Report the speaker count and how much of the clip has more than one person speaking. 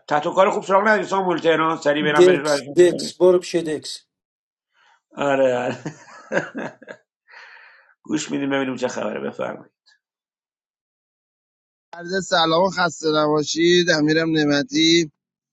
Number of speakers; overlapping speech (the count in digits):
3, about 6%